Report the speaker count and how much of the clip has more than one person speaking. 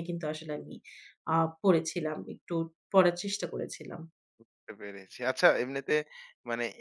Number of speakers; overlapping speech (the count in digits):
2, no overlap